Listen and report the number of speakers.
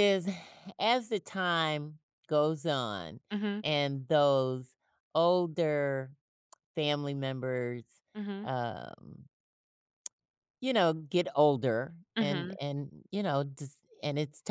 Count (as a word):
two